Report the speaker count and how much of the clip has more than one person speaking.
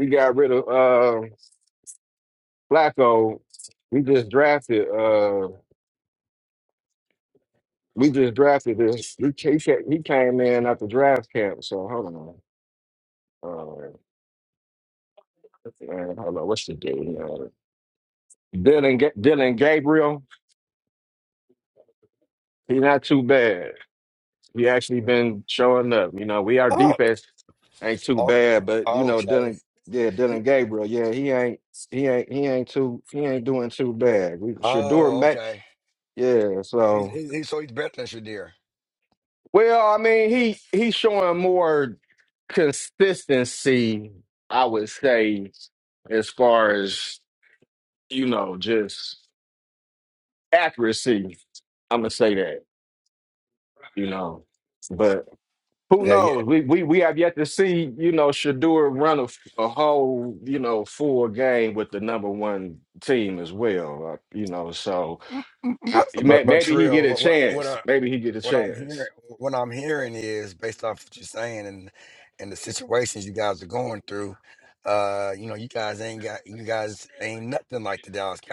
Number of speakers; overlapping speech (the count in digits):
2, about 6%